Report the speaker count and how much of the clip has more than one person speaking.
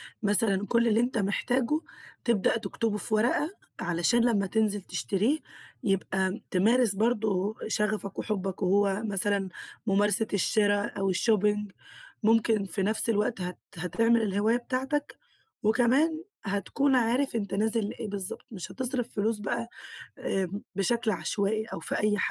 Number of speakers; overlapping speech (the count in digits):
1, no overlap